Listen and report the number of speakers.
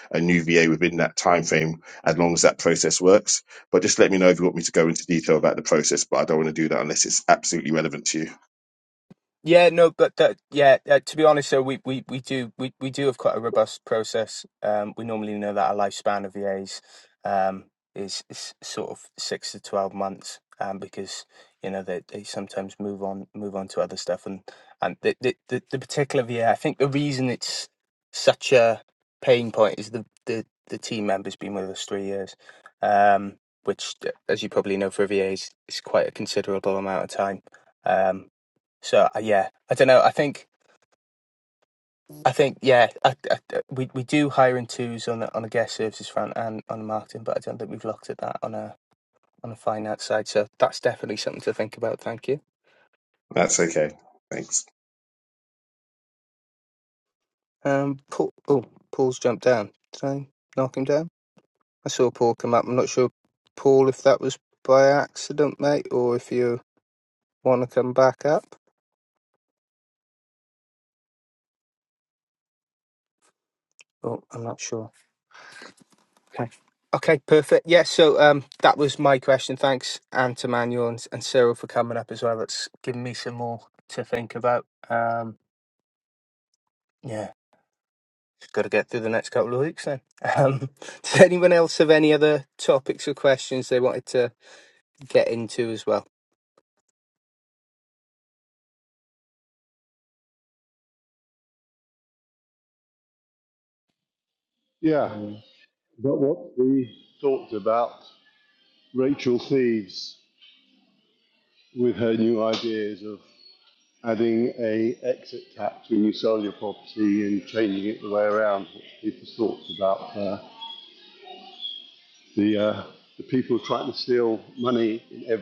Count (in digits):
3